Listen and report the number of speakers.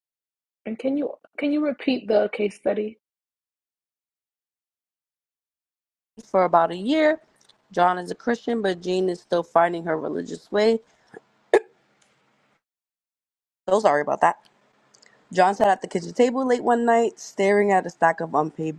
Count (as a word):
two